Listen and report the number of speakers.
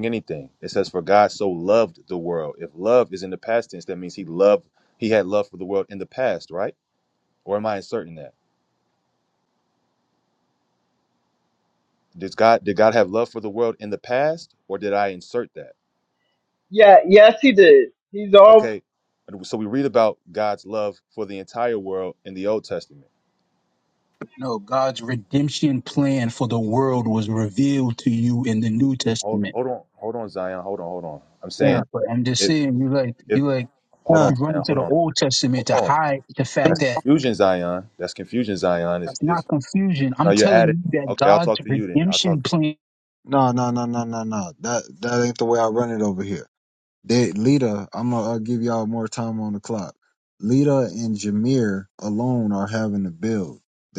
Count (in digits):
4